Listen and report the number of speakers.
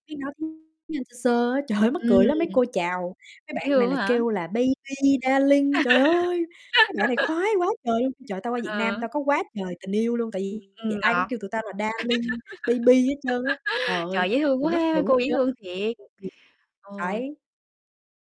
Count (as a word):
two